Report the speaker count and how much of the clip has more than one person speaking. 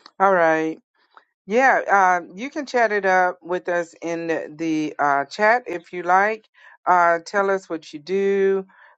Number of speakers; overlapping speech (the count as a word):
one, no overlap